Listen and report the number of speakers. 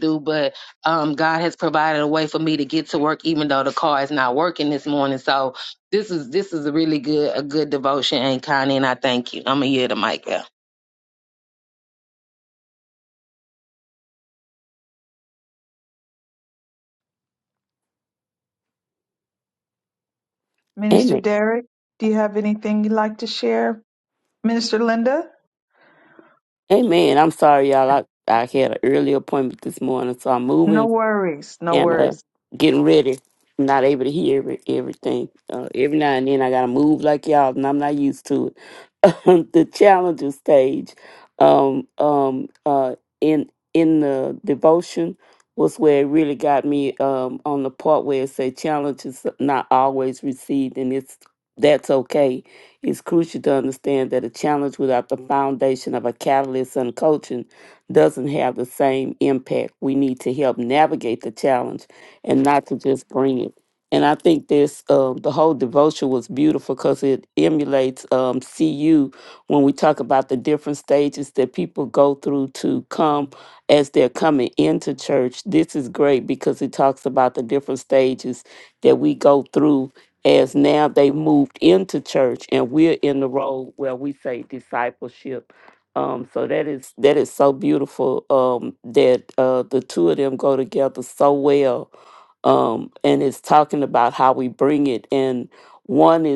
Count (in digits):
3